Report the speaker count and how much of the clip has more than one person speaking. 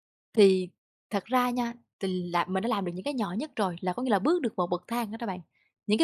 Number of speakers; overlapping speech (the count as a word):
one, no overlap